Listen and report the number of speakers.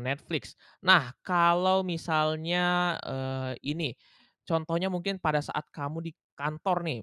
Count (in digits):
1